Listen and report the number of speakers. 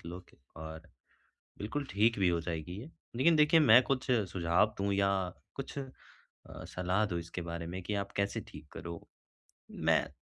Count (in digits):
1